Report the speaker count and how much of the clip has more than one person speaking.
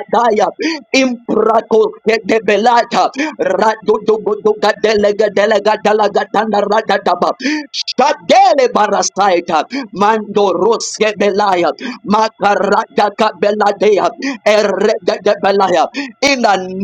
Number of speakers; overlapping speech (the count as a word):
one, no overlap